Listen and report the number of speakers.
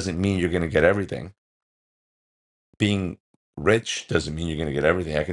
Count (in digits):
1